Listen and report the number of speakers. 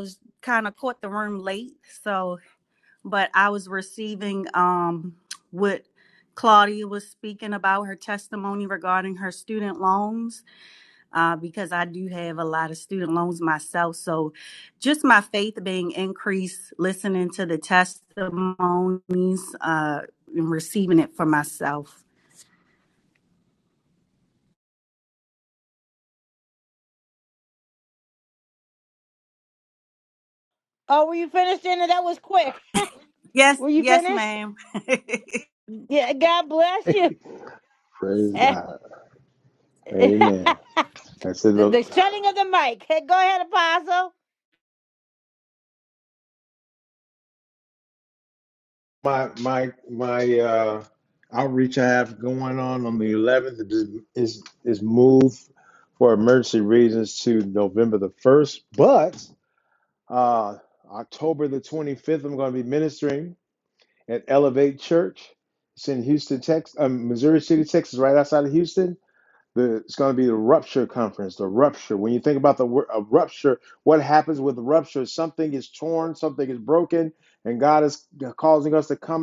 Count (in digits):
3